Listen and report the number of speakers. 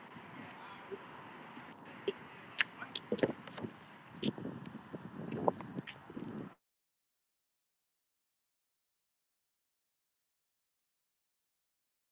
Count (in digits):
0